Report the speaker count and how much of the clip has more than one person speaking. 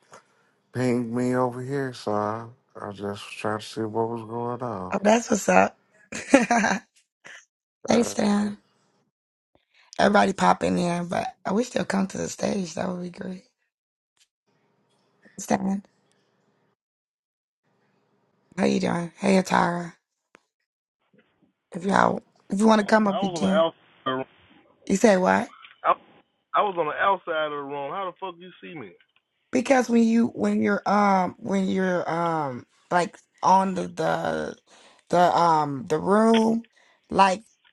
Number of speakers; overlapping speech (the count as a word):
three, about 3%